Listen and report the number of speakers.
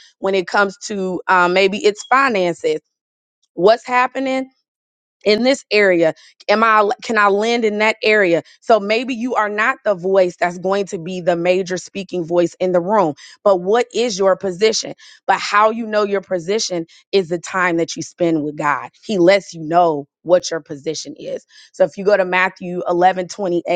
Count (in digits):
1